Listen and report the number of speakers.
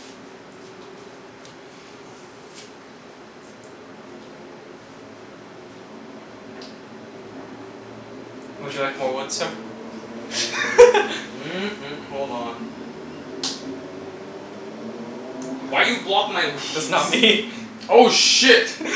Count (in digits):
3